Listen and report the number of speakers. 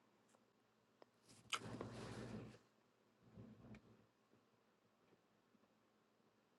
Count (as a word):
zero